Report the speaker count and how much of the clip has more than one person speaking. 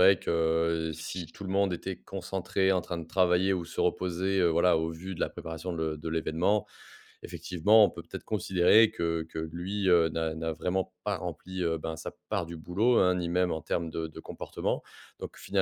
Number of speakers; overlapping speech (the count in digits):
1, no overlap